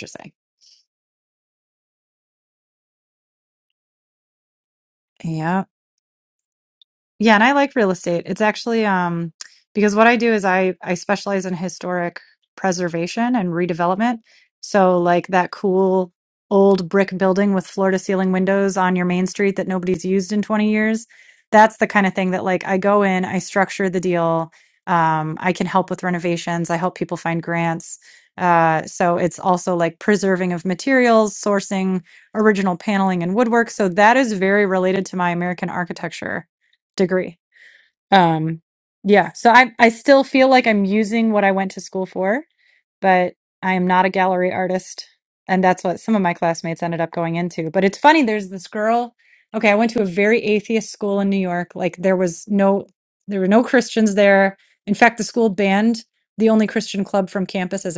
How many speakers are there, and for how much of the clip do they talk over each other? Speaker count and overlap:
1, no overlap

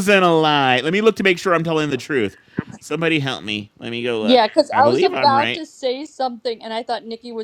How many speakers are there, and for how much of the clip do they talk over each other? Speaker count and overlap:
2, about 13%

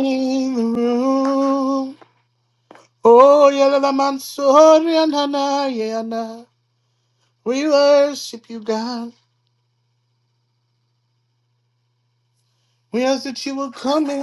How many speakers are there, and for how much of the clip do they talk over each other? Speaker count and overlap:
1, no overlap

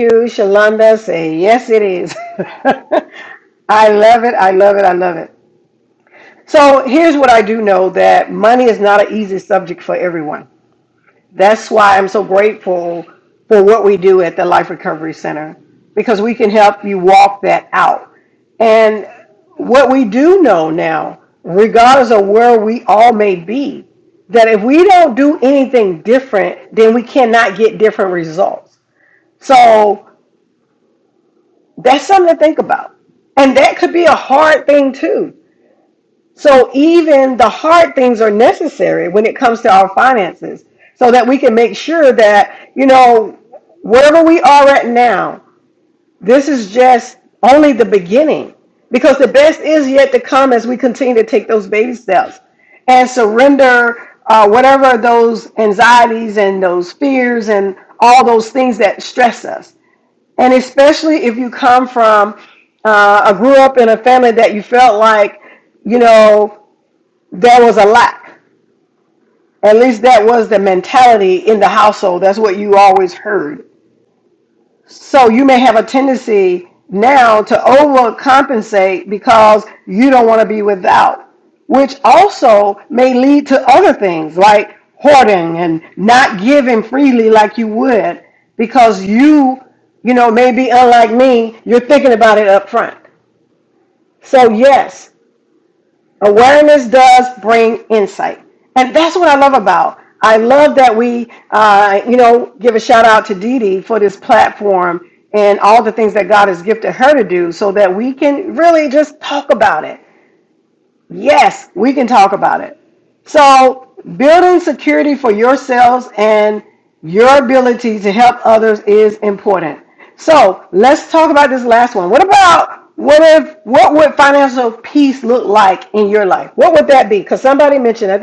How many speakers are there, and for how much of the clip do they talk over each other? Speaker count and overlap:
1, no overlap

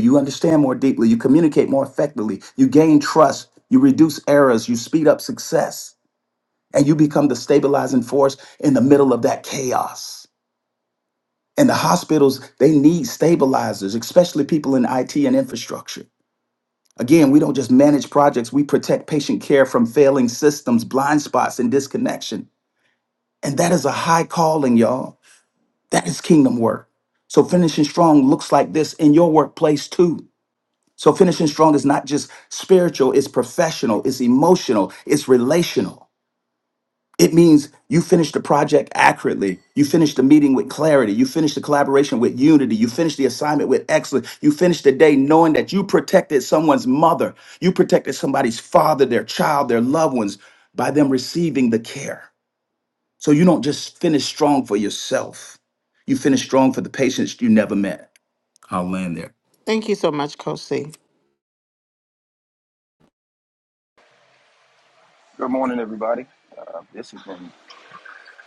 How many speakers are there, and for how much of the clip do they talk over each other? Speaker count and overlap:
3, no overlap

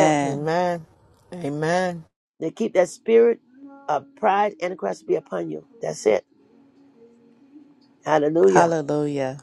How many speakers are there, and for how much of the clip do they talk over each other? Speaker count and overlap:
3, about 6%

